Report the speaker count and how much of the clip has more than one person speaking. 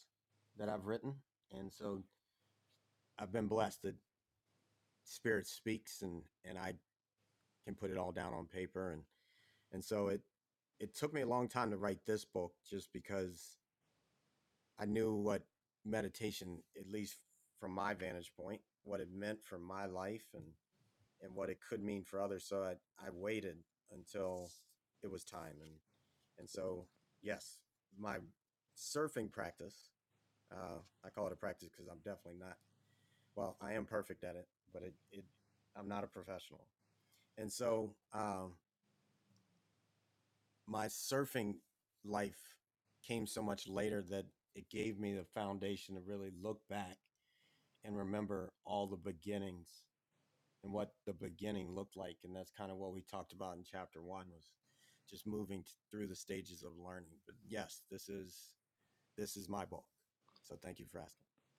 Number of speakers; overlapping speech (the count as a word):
one, no overlap